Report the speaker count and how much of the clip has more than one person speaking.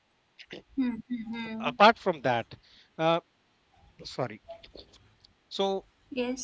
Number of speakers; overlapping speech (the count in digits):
2, about 2%